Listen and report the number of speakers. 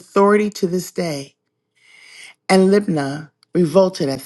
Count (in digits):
1